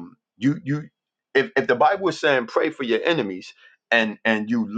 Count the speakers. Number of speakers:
1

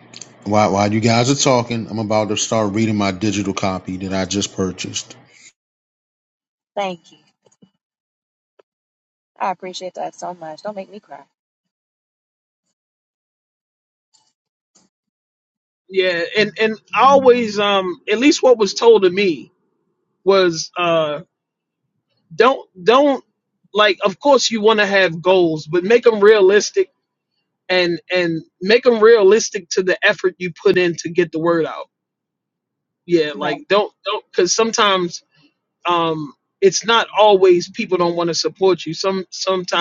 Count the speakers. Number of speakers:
3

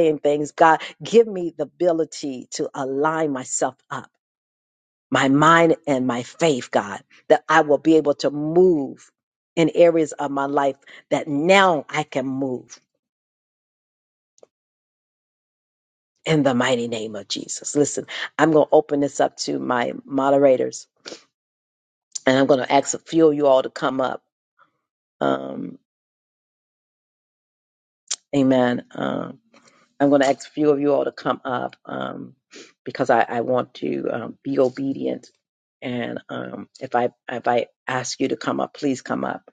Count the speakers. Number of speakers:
1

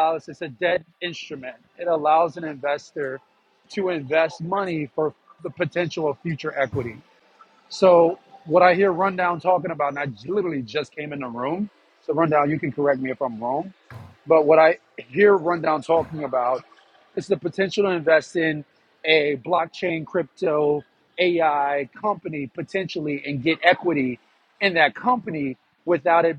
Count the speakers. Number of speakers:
1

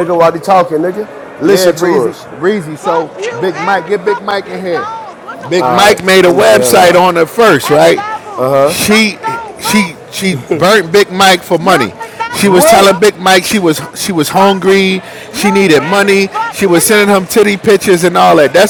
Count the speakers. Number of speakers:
3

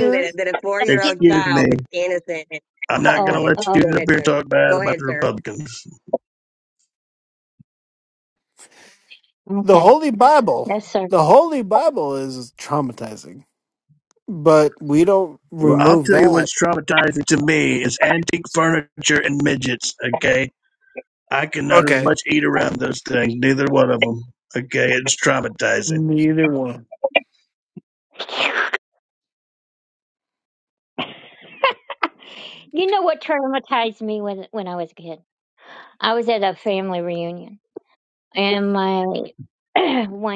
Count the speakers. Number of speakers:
4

